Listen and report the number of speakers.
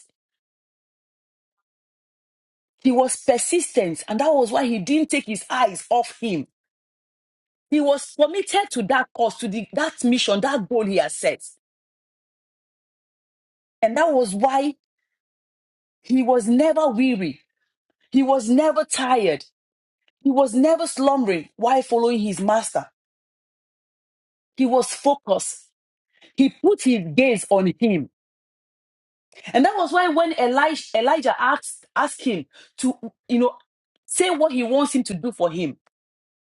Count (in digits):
1